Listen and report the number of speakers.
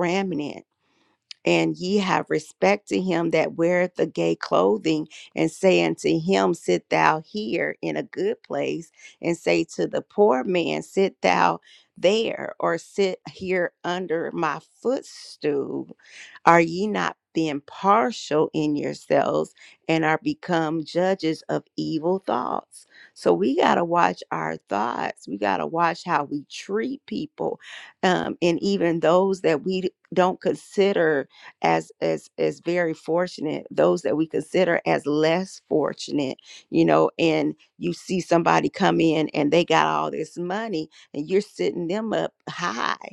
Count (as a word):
one